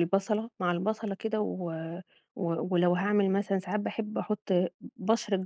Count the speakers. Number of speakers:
1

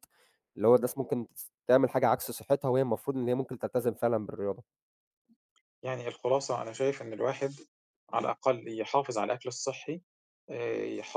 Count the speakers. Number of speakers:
2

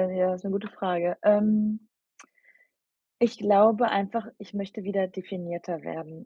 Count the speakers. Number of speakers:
1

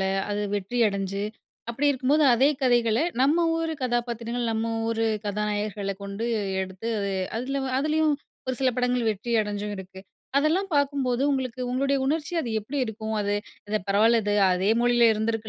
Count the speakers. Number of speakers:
1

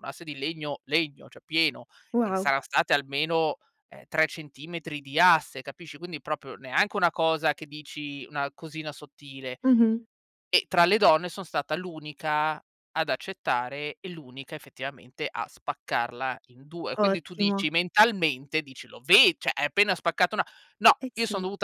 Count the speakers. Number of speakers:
2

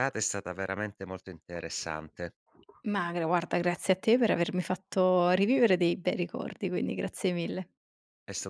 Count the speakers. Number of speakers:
2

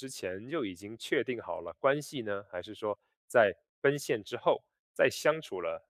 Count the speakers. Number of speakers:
1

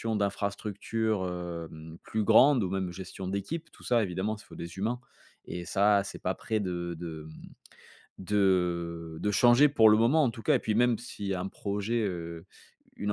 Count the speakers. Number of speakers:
1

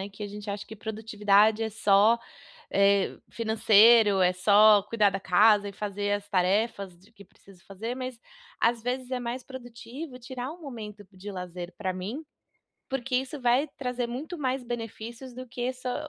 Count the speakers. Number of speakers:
1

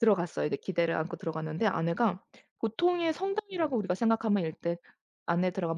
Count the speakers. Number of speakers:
1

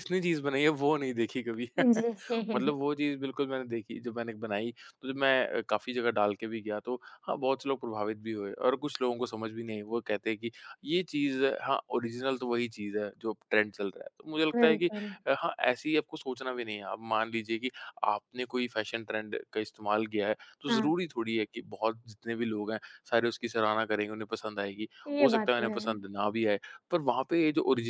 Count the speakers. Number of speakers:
2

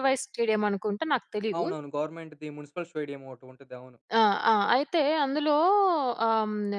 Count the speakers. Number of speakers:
2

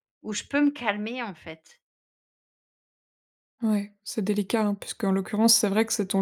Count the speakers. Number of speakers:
2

